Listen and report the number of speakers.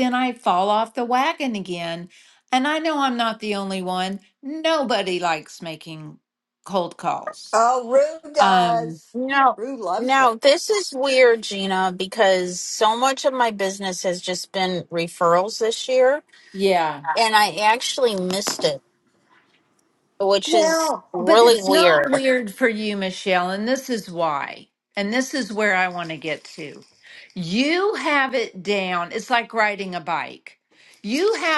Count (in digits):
3